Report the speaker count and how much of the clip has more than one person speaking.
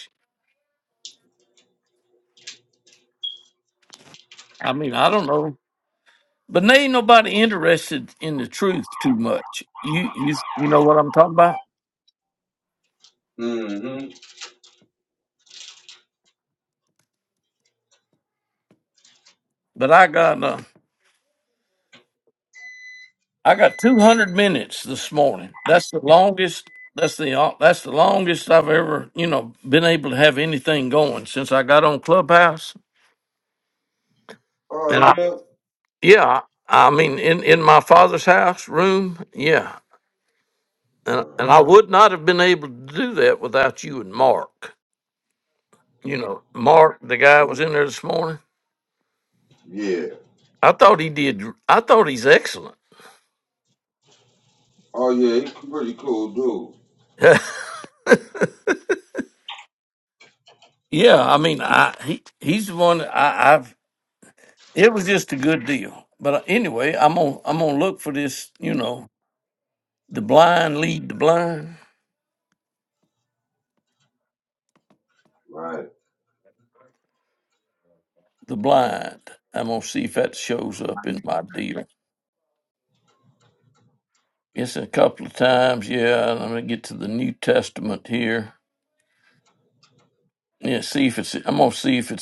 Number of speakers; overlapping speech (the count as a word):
two, about 1%